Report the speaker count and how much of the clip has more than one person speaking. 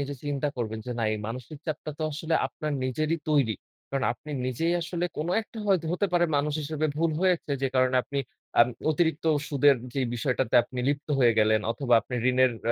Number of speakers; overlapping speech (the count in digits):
1, no overlap